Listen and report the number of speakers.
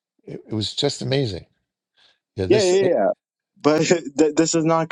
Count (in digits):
2